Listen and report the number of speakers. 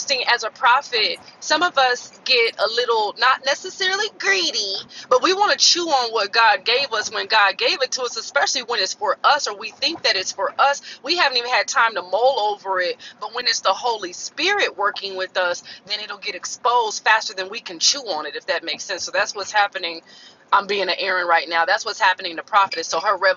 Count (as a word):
one